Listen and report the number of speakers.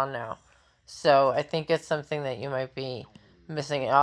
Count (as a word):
one